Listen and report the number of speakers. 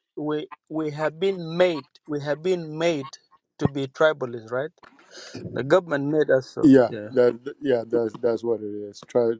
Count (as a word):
two